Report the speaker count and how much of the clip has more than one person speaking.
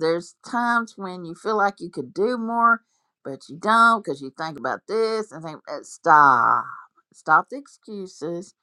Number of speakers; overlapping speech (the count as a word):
one, no overlap